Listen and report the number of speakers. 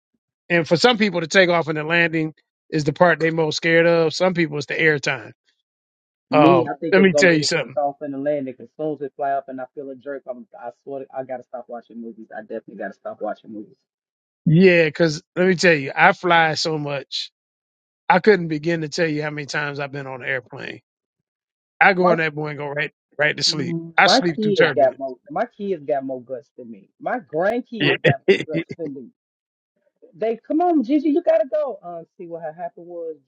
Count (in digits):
2